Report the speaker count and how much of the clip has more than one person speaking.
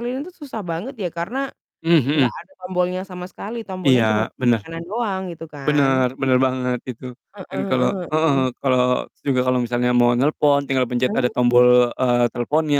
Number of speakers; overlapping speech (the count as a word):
two, about 17%